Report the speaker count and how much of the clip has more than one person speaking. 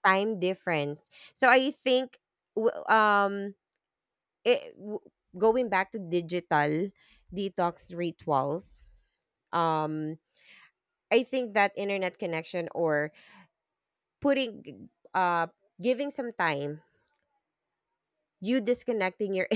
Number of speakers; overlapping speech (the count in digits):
1, no overlap